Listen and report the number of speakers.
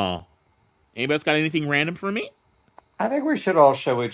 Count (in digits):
2